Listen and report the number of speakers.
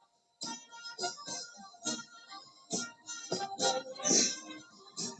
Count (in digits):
0